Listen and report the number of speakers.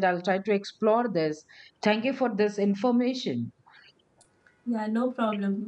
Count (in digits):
2